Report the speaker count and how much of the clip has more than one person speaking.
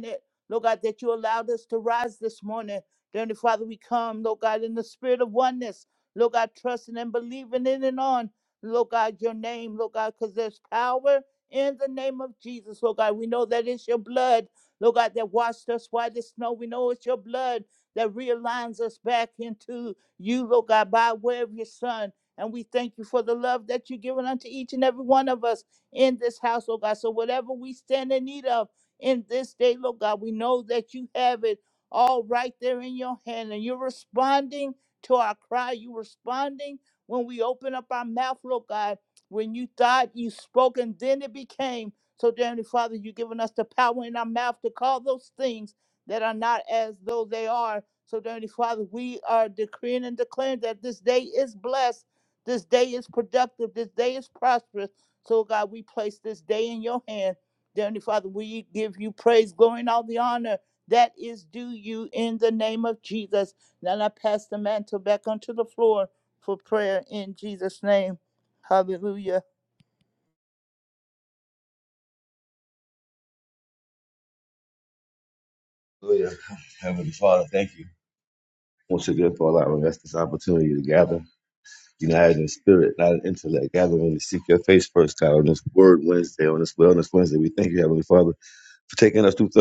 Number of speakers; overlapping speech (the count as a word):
two, no overlap